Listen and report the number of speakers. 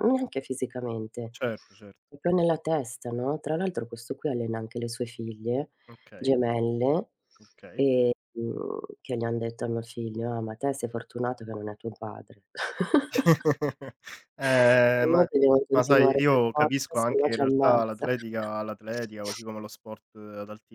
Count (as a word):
two